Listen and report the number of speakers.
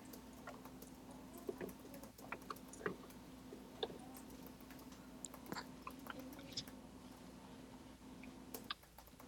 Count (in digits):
0